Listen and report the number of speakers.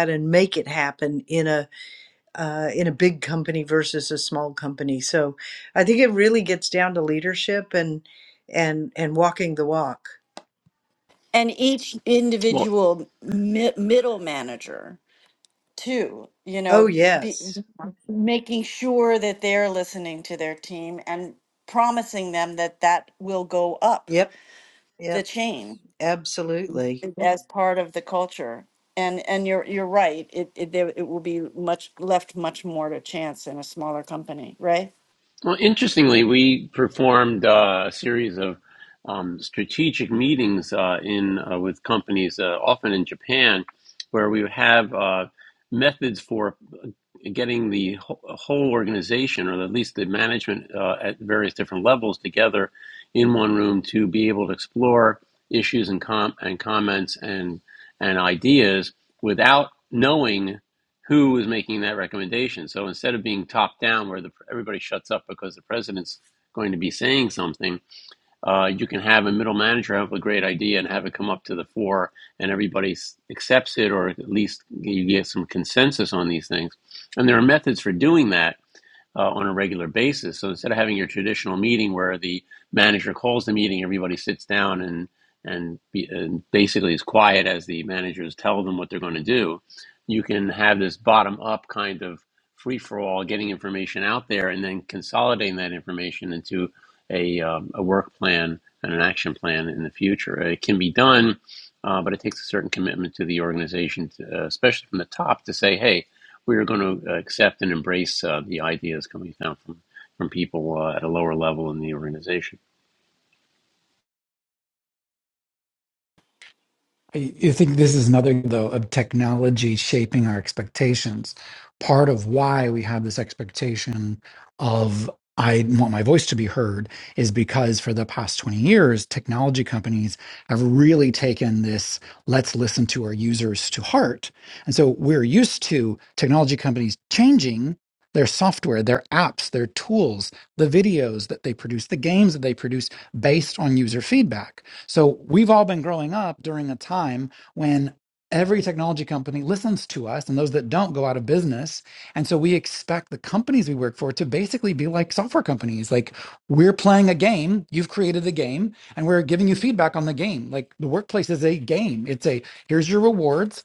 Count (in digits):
4